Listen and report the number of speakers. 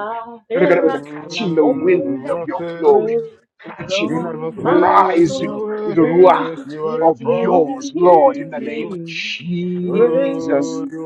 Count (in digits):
3